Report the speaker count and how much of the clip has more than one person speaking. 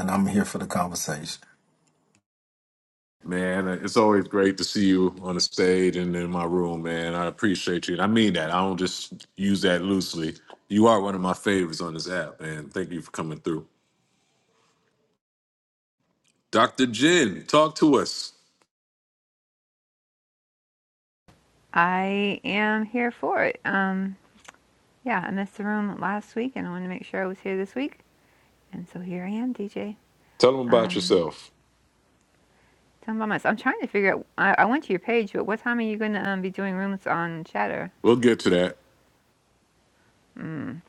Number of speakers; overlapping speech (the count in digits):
3, about 1%